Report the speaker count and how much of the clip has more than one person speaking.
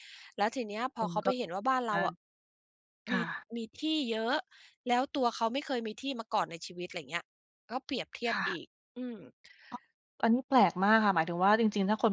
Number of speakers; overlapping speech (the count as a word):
two, about 8%